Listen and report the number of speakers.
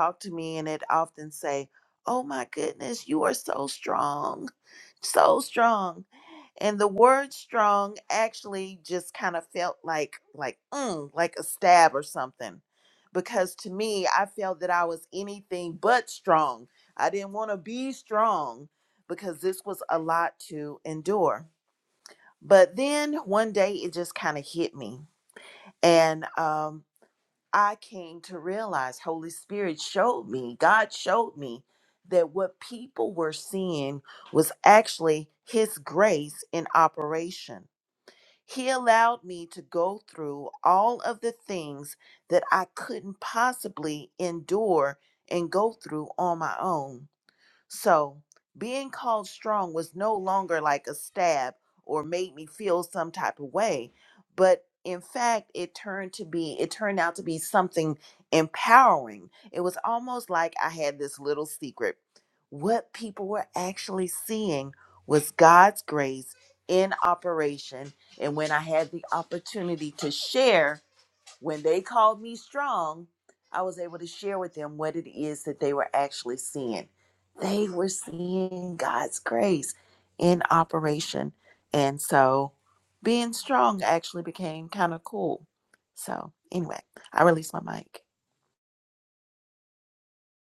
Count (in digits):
1